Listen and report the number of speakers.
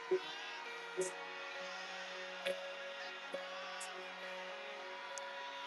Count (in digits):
0